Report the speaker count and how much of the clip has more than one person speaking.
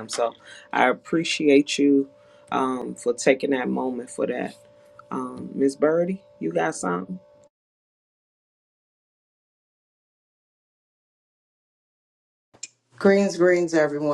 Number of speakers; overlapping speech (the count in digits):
2, no overlap